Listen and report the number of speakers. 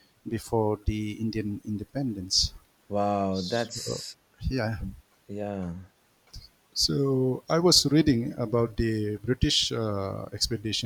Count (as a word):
two